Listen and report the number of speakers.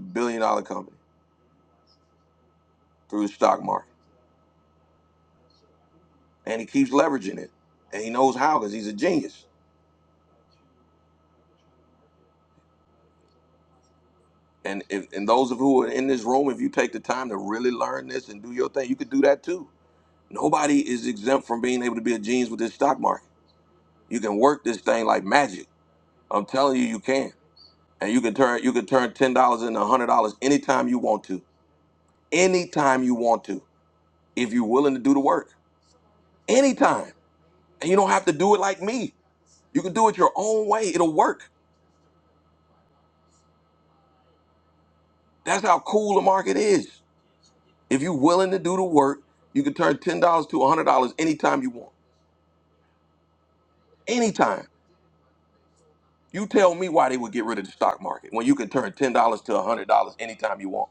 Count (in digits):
1